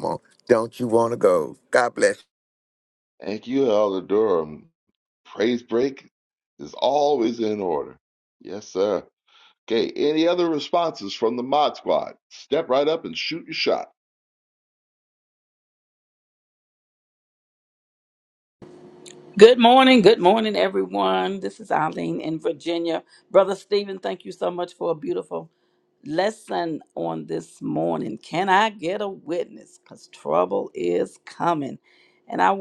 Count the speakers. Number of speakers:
3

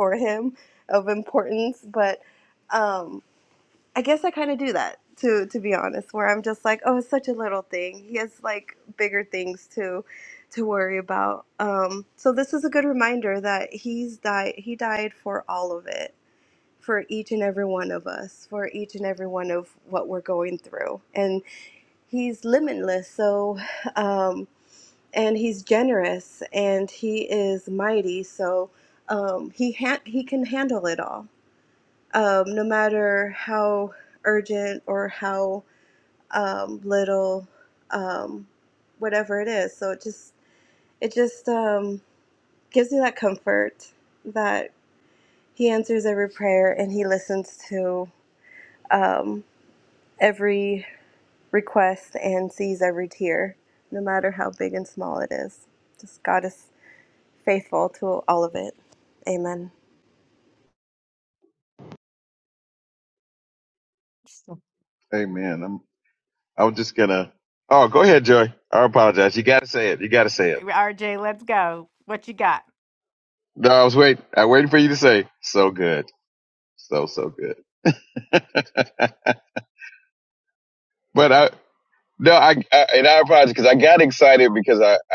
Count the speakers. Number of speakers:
3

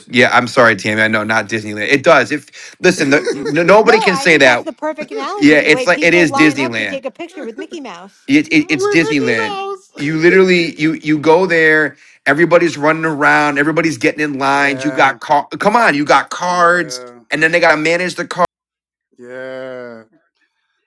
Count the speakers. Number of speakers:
3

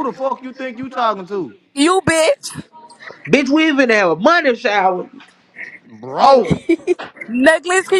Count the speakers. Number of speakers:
3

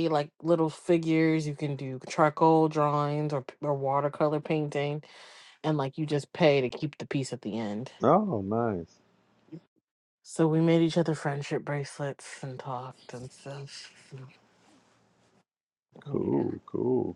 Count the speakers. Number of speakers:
2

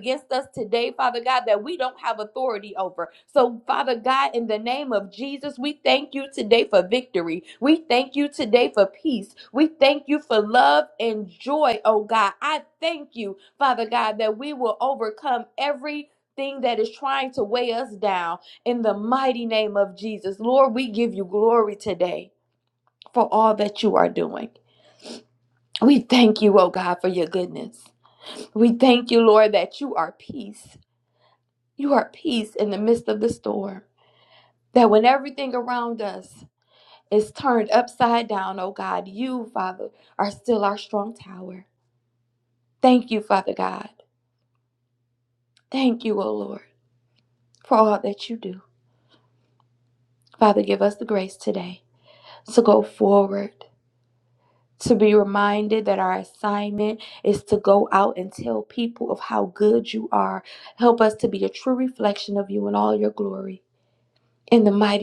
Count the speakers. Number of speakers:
1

